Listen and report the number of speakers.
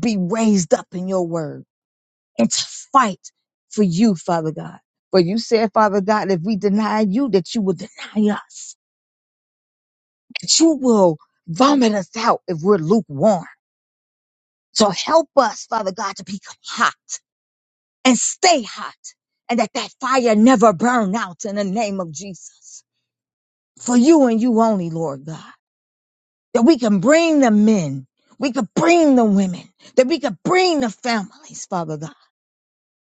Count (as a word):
one